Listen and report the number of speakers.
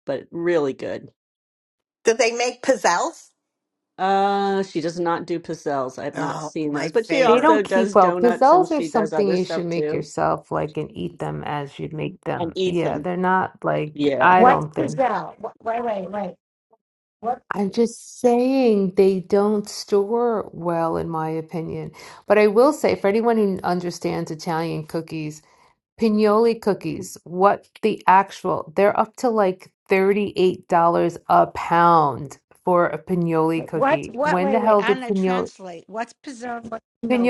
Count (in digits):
4